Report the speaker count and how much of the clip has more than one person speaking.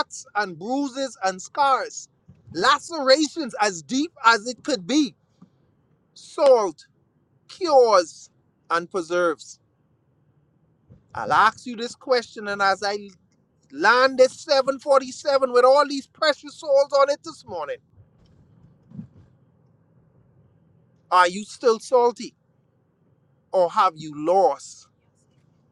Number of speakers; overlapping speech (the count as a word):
one, no overlap